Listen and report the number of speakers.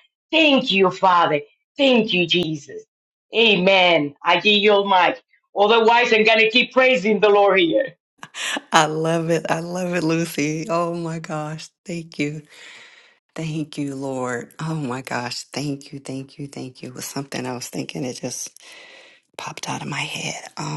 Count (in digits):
2